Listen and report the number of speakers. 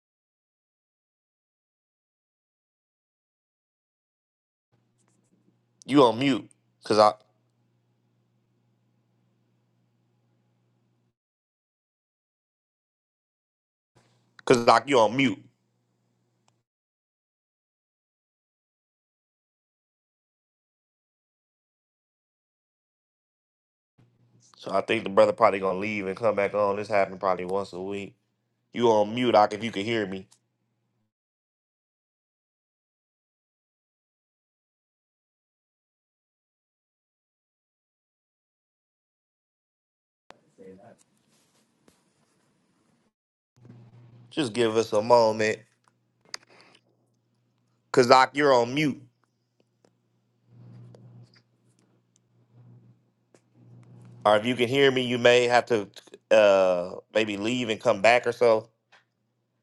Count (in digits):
1